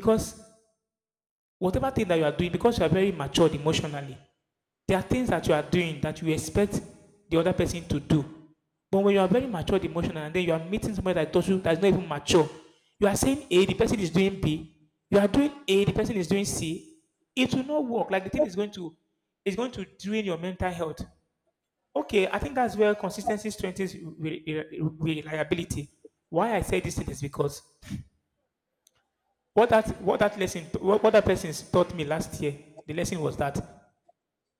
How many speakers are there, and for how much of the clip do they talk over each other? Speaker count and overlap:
1, no overlap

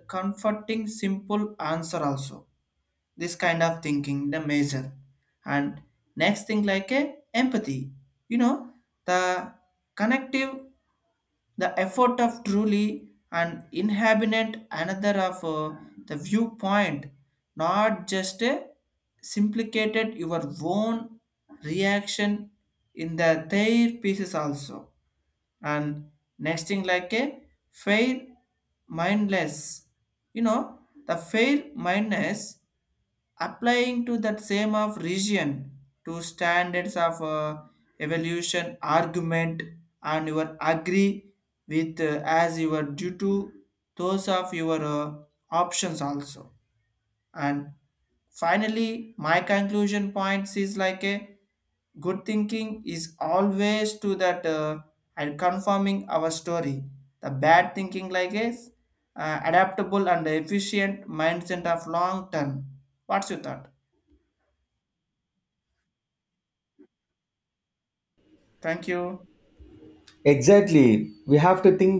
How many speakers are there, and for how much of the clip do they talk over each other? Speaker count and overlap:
2, no overlap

